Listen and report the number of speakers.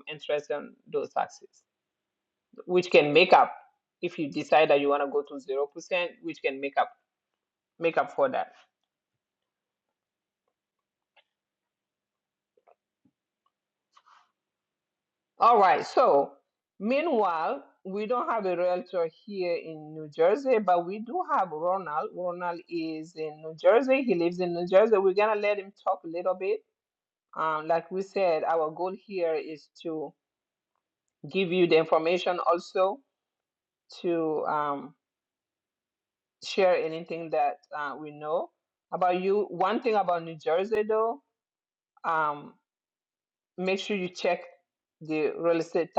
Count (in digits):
1